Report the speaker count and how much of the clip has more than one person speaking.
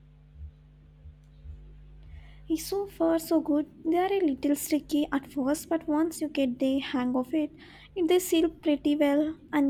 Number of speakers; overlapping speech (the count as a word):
one, no overlap